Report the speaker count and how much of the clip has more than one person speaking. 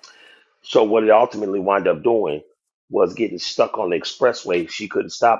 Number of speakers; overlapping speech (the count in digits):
1, no overlap